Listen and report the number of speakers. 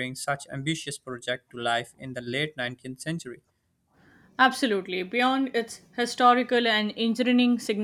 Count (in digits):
2